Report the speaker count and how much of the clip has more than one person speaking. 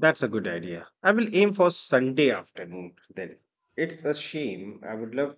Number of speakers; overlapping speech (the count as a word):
one, no overlap